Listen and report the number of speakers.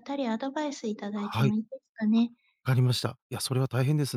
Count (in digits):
2